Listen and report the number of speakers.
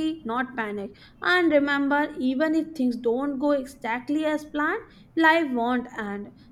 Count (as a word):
one